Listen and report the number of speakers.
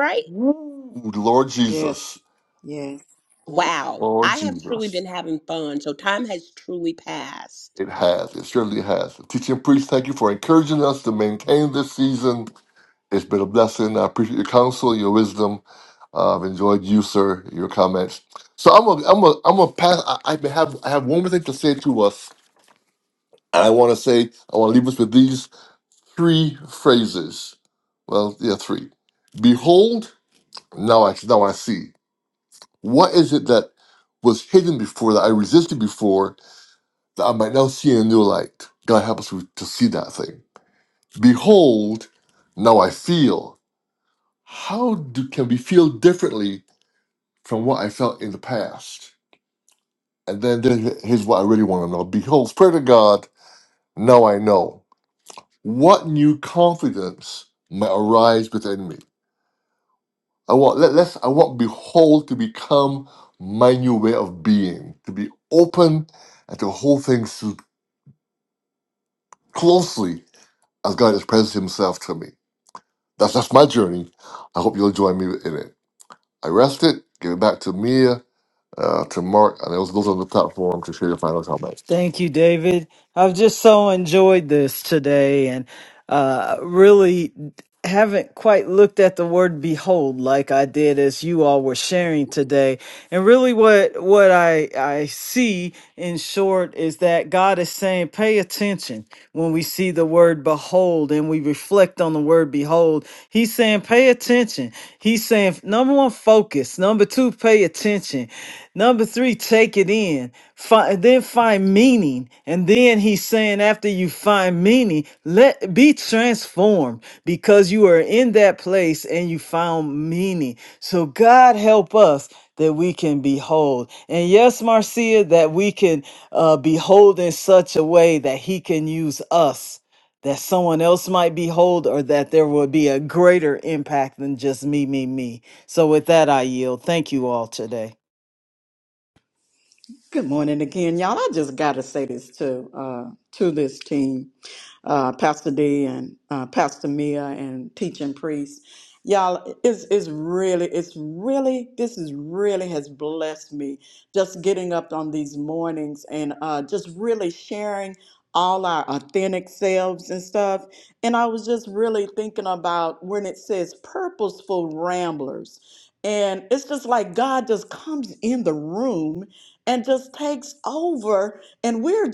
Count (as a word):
four